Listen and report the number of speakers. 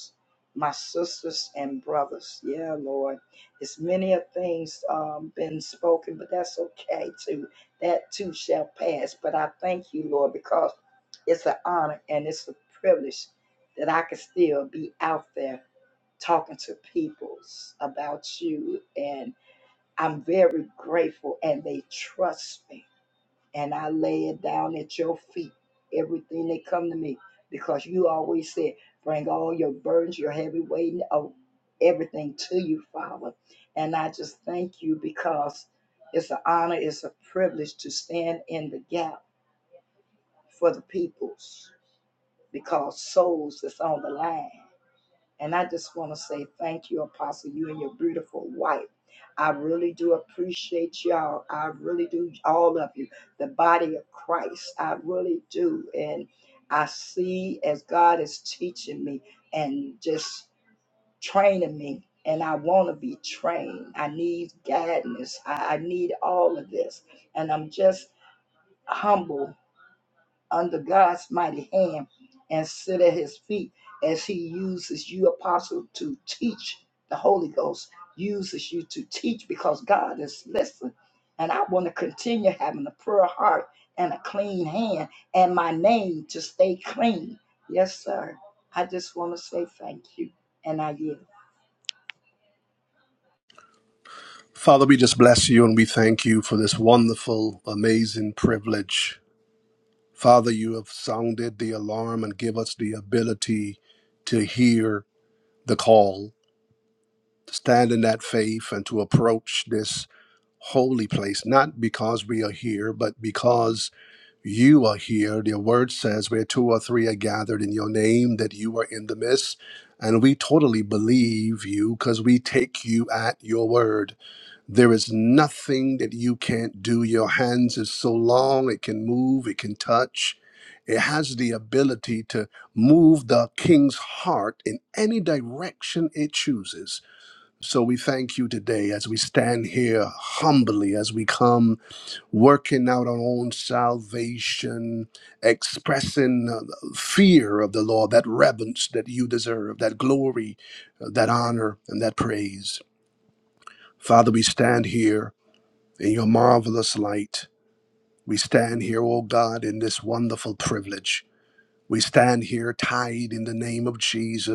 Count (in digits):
2